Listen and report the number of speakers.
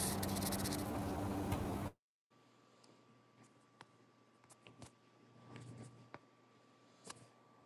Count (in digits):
0